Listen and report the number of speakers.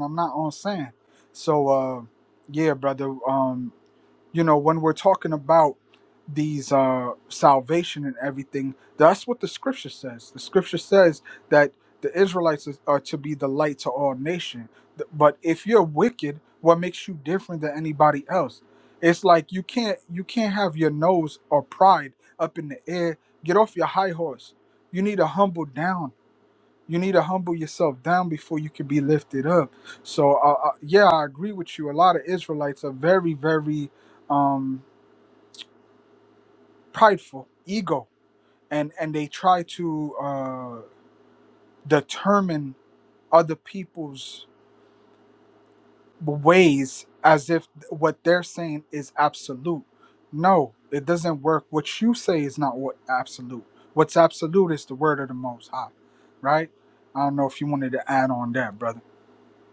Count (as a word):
one